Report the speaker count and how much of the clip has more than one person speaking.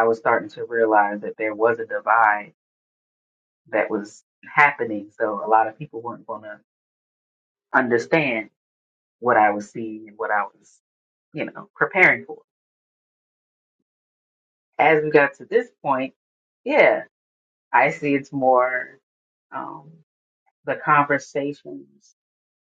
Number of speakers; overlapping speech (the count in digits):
1, no overlap